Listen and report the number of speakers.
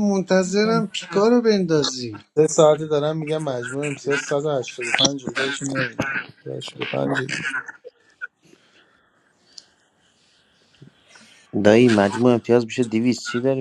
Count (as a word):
three